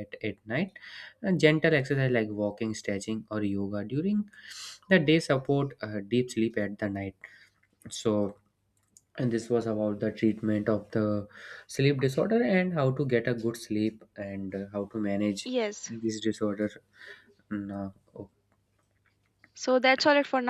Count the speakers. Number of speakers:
two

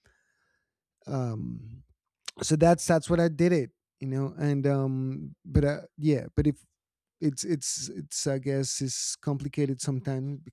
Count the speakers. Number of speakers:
one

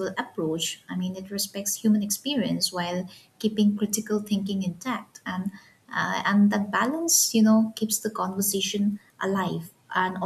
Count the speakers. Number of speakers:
one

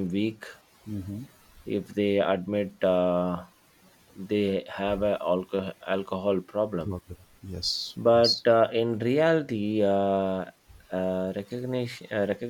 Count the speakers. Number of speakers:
two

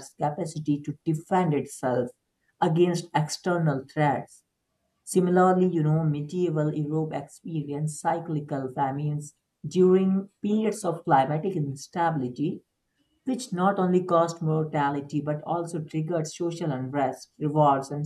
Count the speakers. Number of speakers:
one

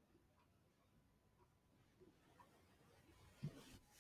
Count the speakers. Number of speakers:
zero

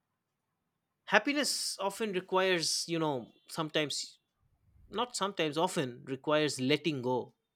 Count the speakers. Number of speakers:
one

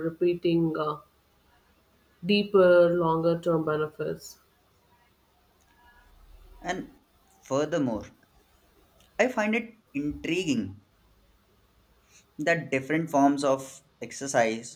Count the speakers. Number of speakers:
two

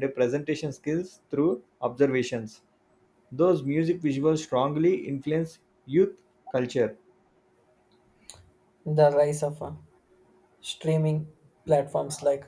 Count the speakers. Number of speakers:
two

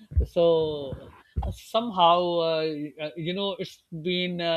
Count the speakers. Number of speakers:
one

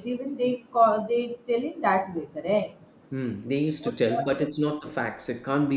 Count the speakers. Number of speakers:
two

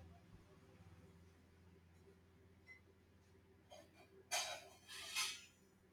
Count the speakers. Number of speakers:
zero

